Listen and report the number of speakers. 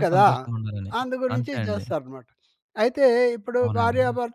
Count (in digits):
2